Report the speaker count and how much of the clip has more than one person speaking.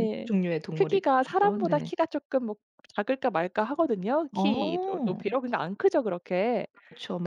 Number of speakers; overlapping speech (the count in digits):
2, about 25%